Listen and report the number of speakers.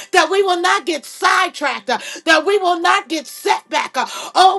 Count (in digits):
1